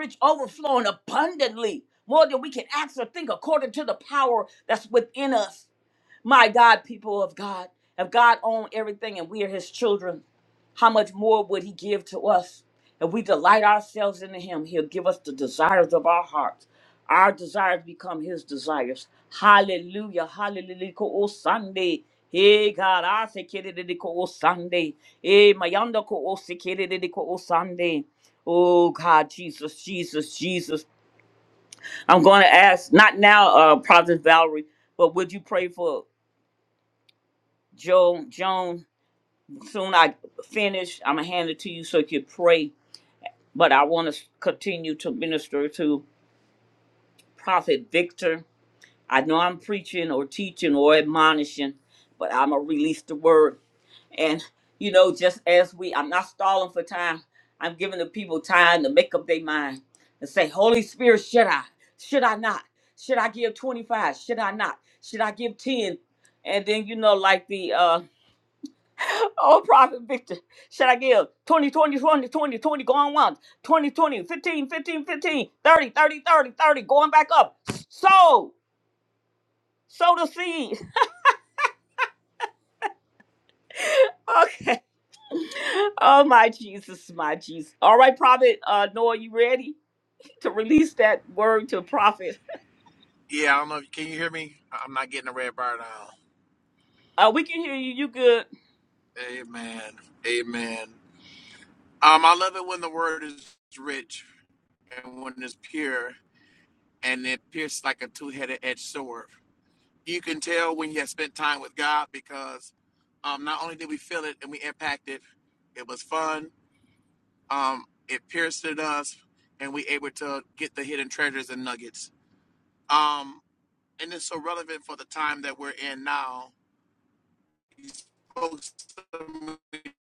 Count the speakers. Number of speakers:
2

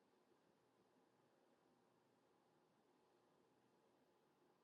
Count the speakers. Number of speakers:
0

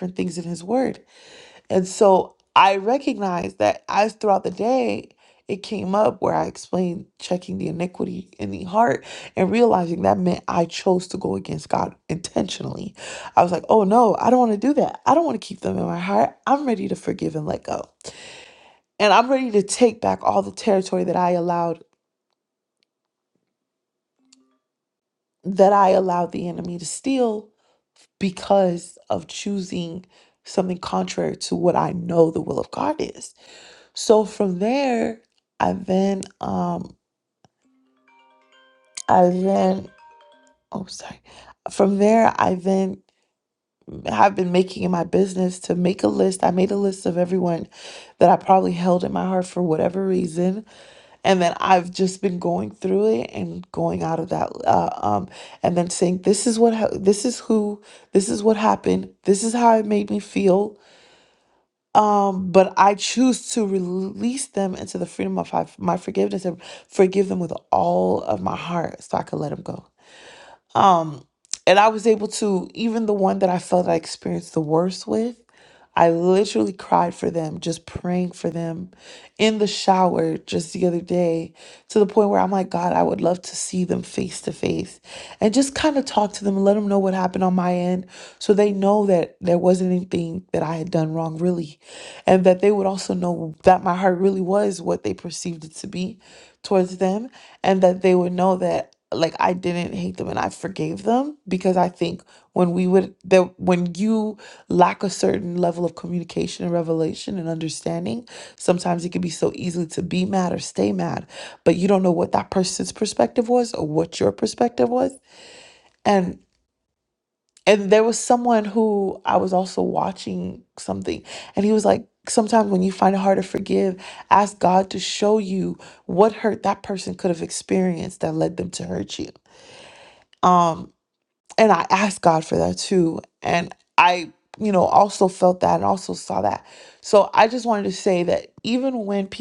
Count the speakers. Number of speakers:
1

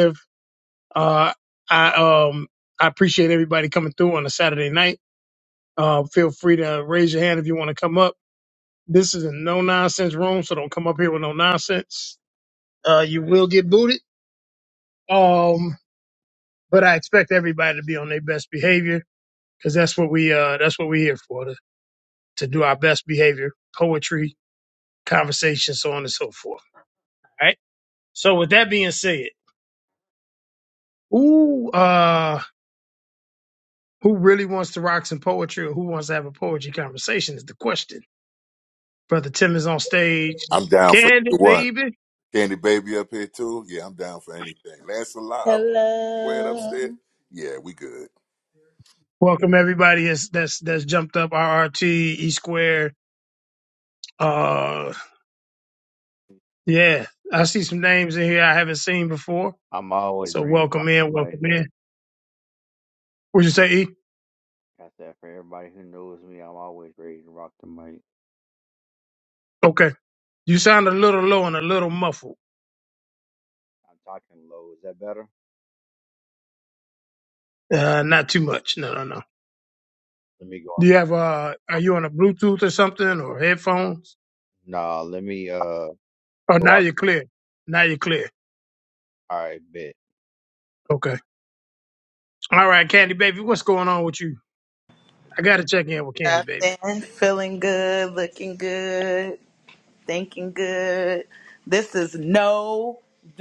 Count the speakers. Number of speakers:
4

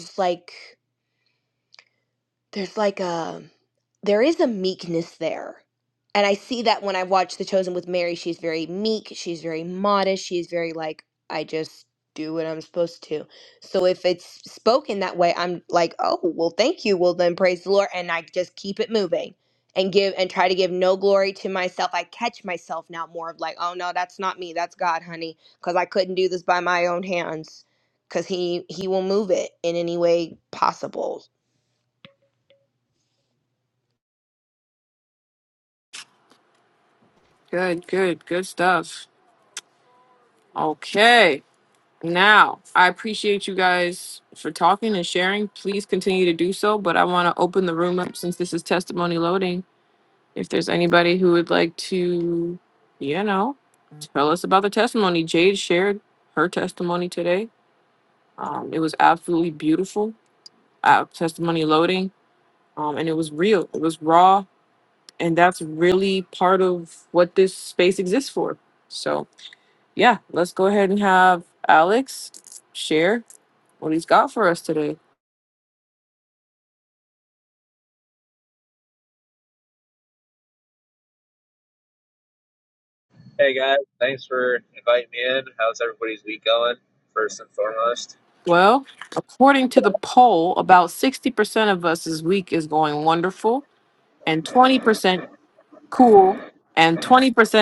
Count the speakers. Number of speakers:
3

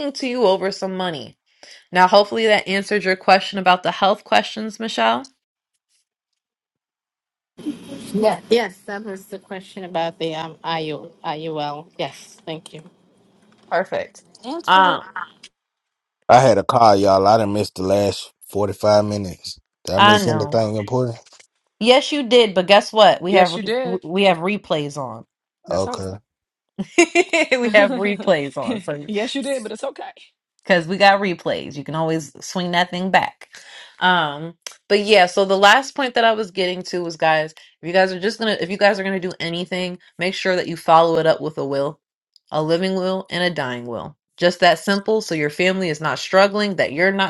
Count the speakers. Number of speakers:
4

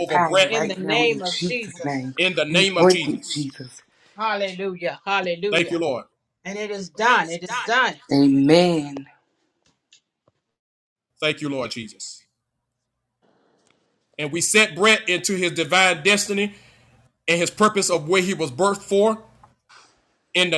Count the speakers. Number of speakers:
3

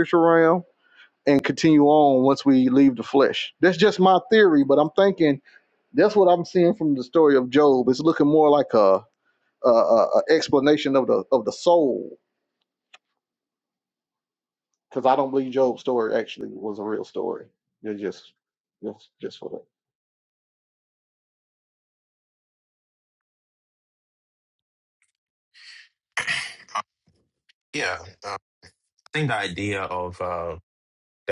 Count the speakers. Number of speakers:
2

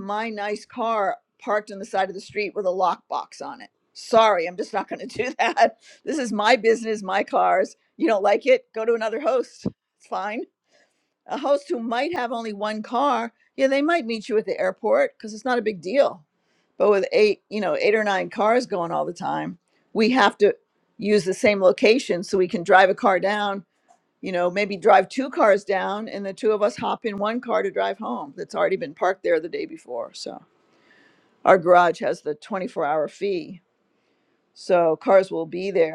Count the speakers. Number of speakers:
1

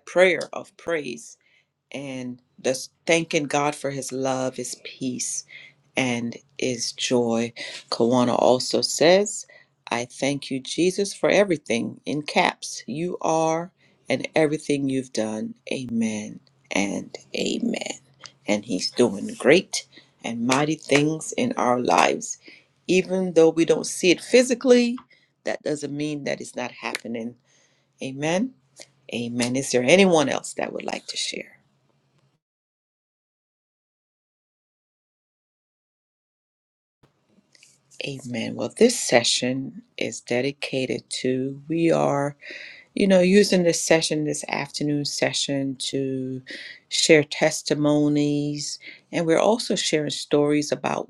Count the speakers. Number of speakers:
1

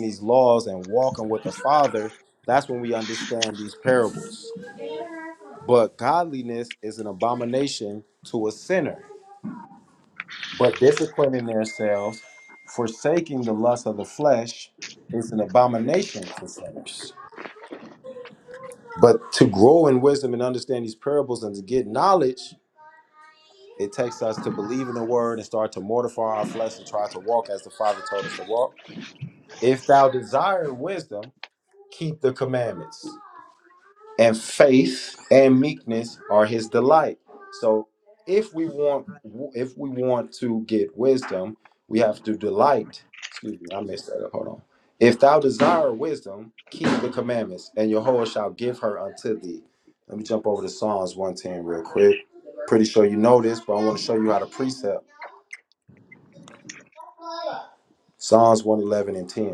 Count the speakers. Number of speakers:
1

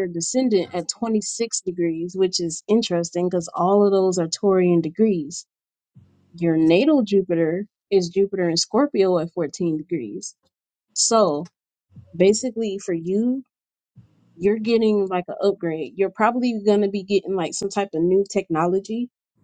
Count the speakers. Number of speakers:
1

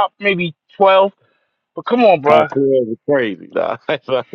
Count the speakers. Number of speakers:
2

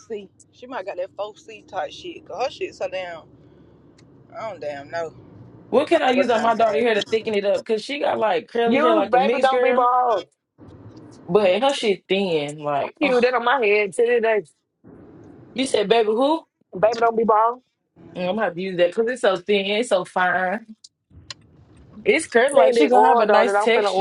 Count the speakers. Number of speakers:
3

